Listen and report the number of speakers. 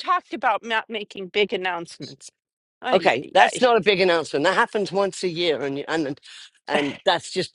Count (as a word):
two